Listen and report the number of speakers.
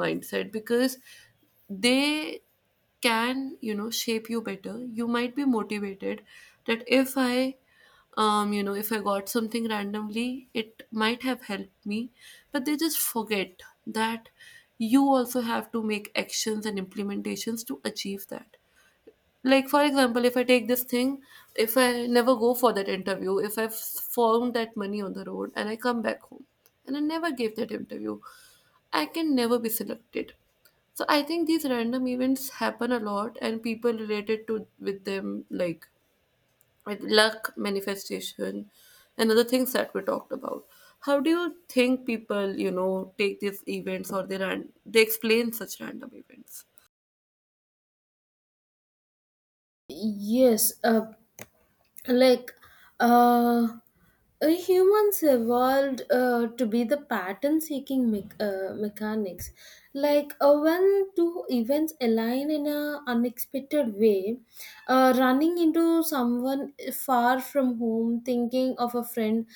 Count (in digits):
2